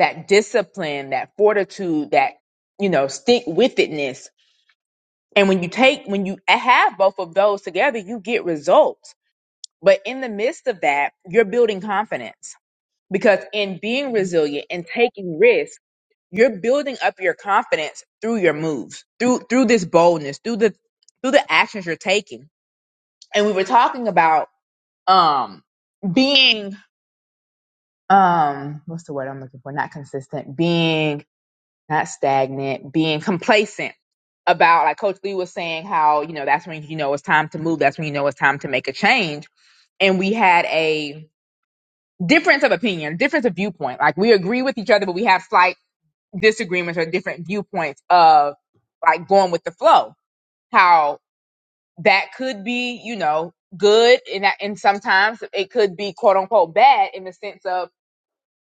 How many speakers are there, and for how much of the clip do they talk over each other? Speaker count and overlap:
1, no overlap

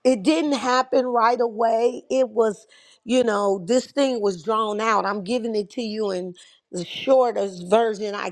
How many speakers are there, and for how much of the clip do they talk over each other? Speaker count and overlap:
1, no overlap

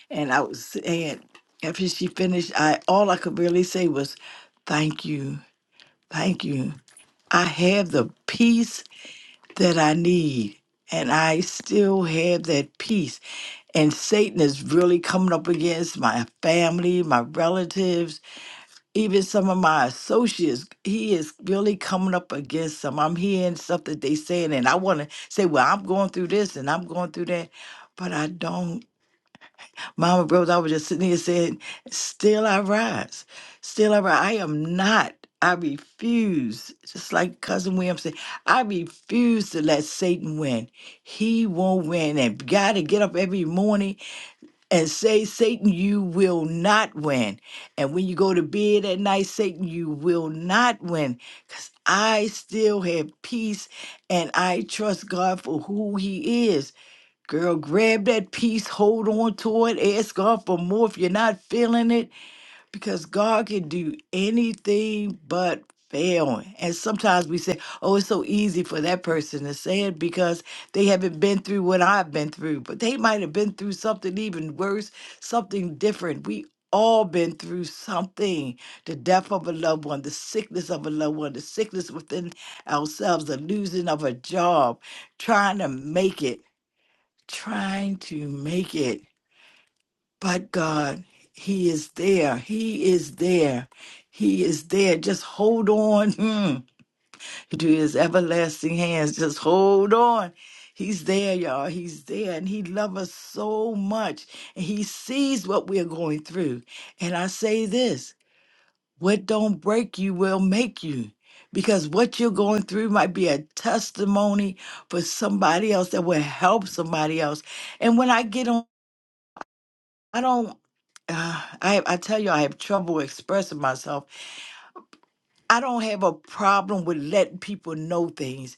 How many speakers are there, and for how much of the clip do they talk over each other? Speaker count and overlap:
1, no overlap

